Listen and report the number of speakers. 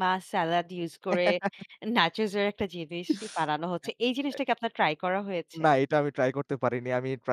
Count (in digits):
2